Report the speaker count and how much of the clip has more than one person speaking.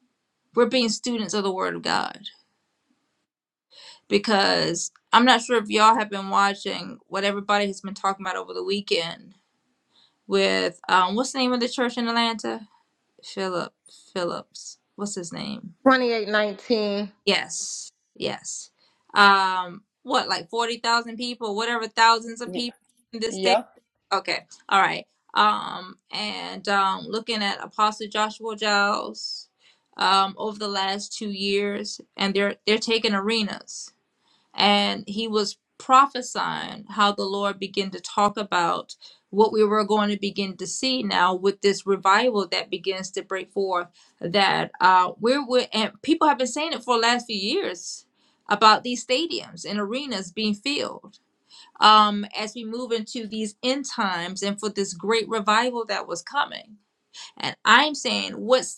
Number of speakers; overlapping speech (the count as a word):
two, under 1%